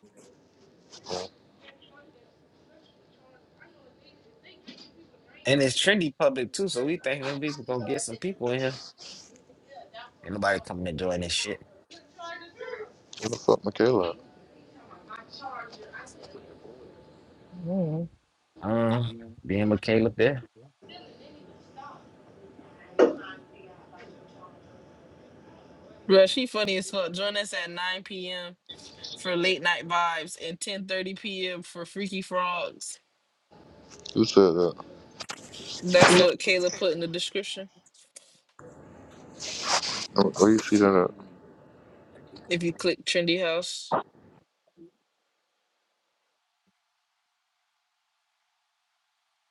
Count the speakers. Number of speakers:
3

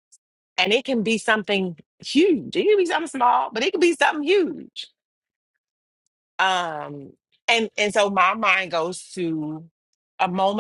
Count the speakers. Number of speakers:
1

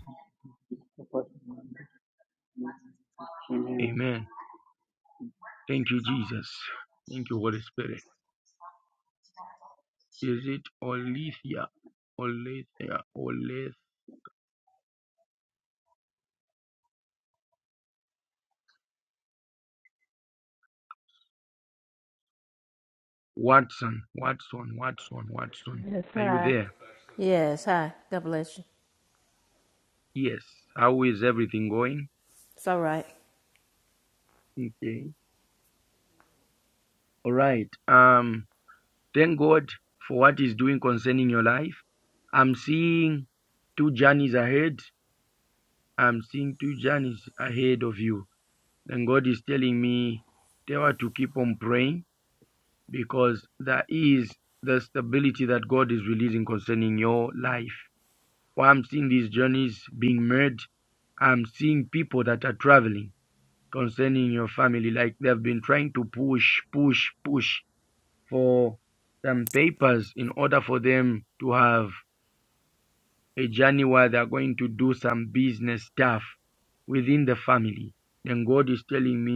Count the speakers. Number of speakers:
3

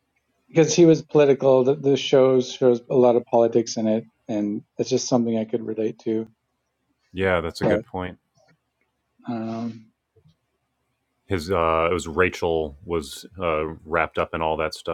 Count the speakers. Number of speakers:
2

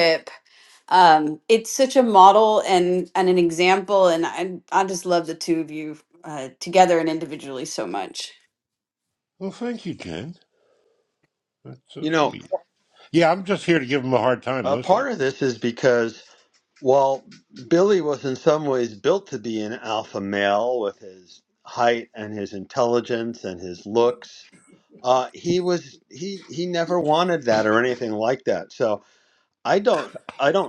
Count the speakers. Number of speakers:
3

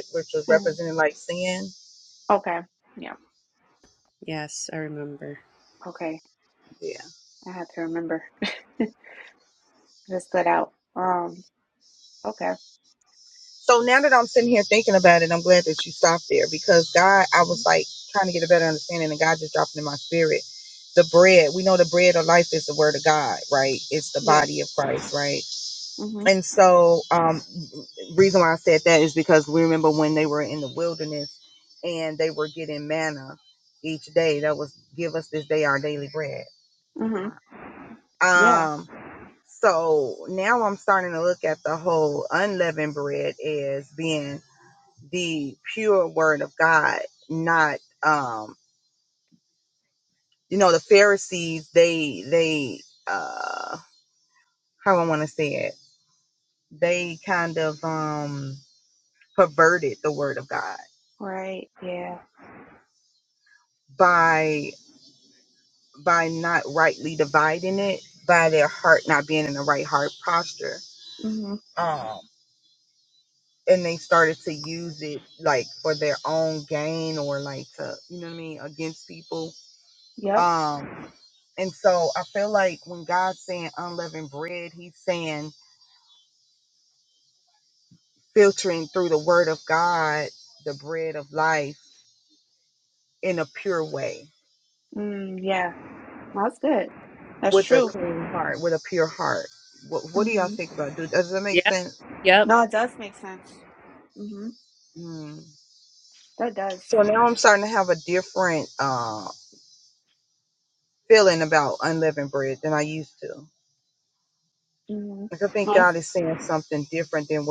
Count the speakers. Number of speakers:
3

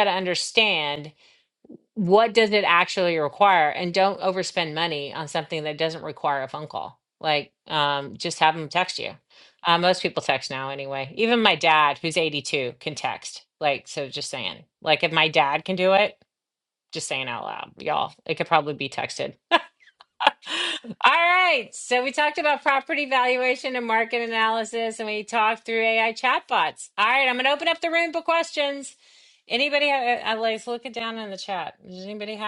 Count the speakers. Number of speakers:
1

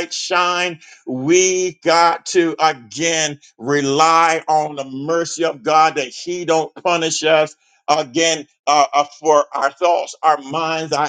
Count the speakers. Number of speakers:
1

